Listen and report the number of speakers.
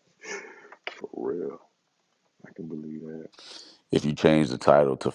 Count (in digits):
2